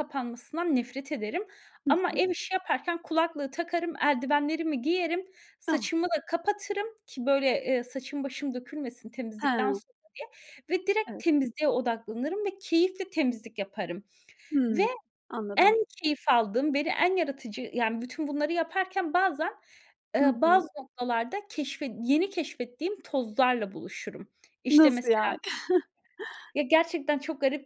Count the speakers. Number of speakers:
2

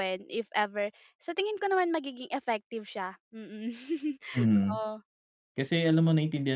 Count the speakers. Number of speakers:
2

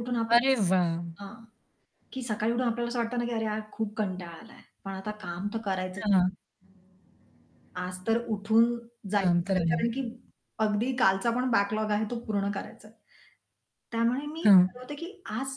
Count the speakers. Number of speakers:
2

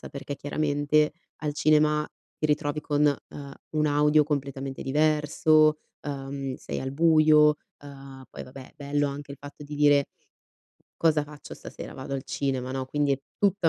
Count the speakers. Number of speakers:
1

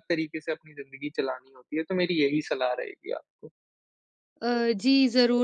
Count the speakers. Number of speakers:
2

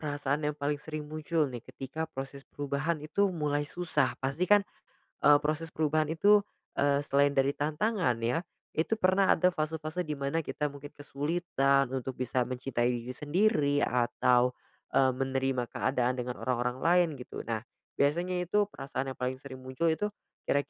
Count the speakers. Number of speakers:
1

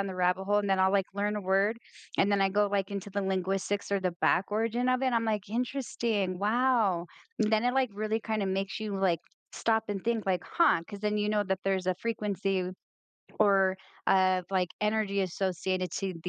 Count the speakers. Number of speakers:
1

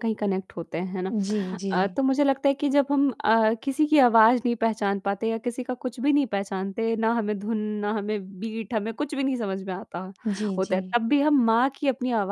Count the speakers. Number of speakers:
2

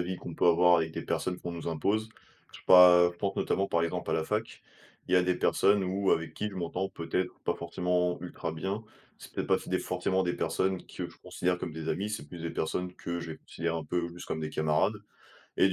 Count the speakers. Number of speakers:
1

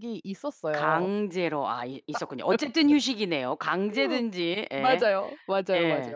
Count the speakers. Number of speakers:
2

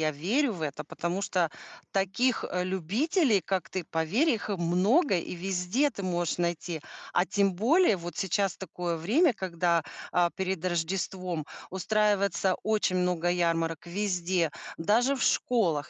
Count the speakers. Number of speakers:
1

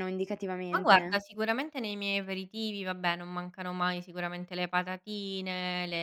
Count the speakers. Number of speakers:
2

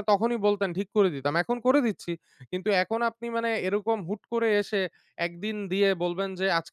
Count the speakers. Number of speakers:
1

